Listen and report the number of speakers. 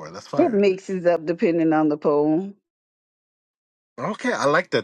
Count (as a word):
two